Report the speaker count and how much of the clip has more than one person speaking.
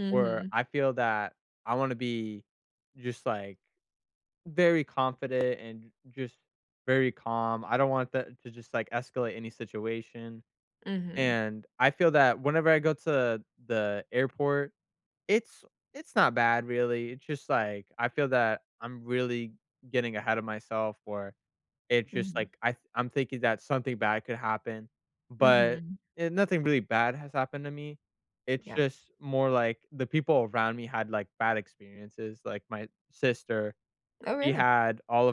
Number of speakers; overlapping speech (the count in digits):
2, about 4%